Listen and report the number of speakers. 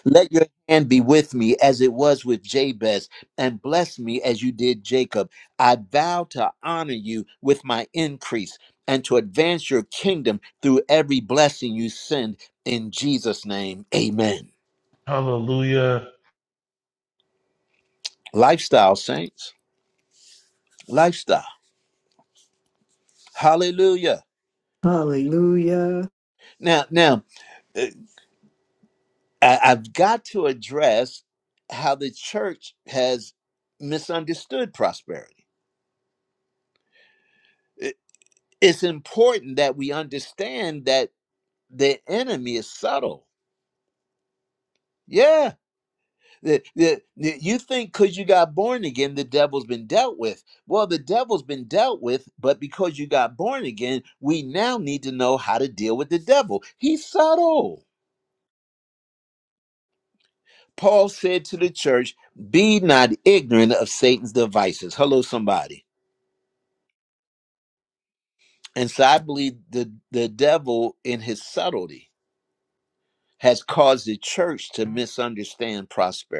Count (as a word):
three